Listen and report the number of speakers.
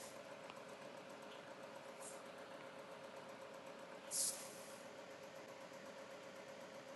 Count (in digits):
0